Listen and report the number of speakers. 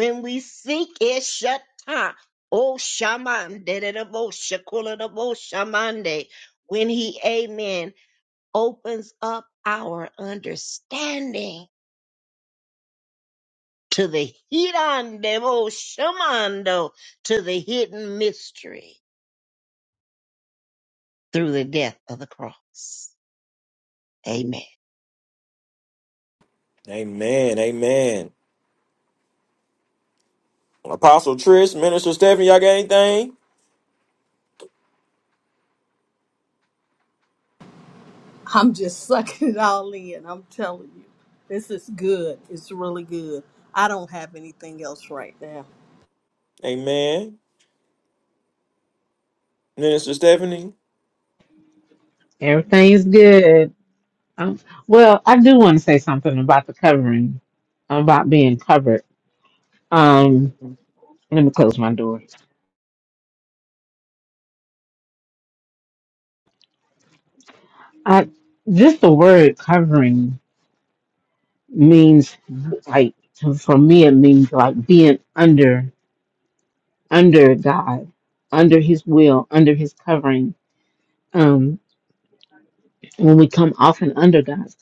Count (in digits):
4